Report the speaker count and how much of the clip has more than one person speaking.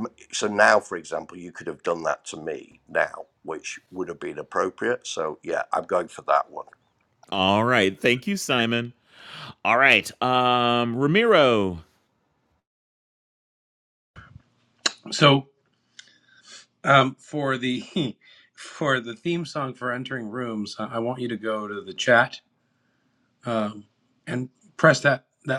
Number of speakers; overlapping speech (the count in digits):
3, no overlap